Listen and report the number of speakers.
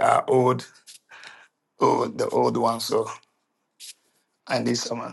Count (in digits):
1